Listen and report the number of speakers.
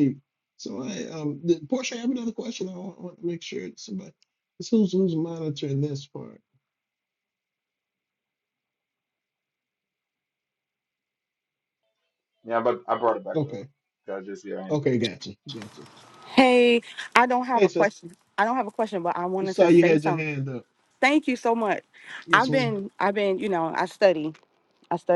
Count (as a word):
three